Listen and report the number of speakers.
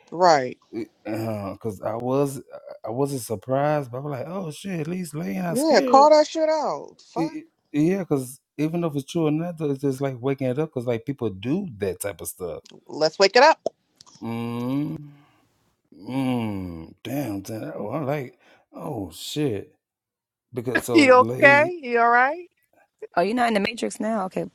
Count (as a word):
three